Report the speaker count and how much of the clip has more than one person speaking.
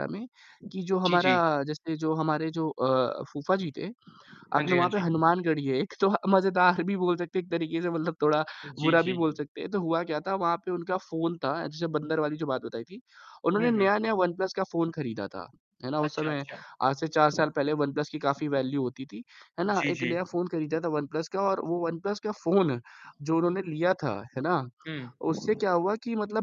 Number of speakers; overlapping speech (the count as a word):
two, about 11%